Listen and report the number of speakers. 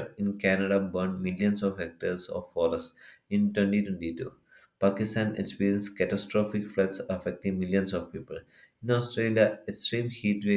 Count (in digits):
1